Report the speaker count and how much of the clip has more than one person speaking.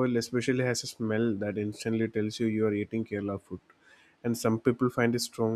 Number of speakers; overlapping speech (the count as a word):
one, no overlap